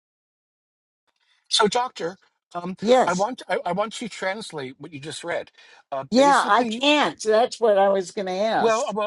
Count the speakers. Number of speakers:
2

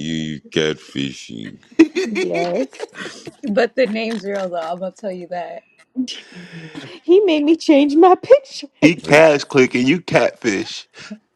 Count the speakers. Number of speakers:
4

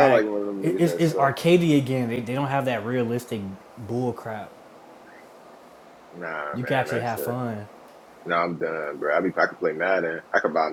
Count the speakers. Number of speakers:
2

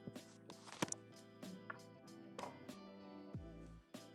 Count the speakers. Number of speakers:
0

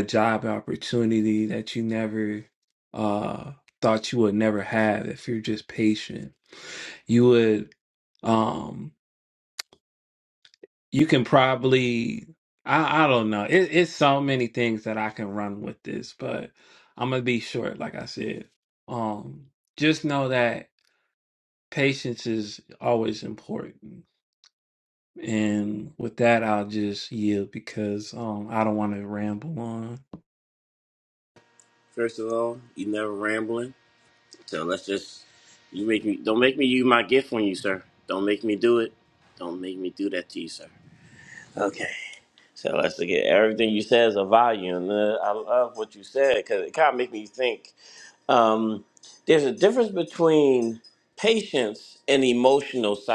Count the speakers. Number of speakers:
2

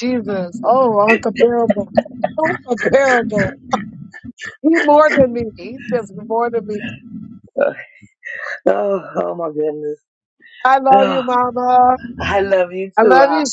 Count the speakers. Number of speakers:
2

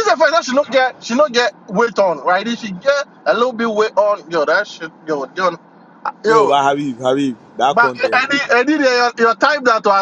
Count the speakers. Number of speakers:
2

